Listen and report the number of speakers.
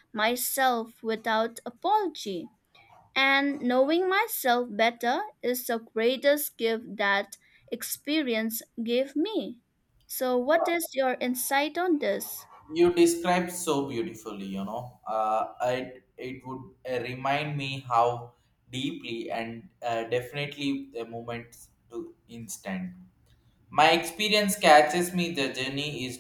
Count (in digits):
2